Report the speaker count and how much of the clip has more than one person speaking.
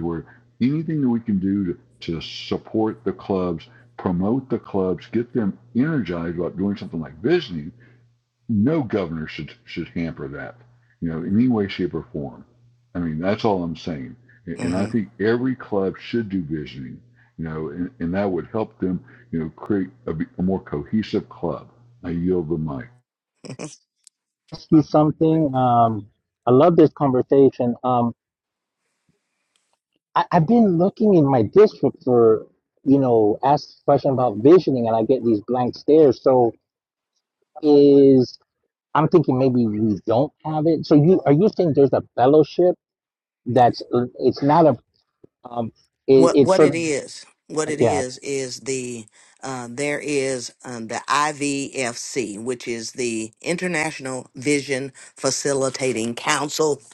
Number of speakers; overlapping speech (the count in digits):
3, about 2%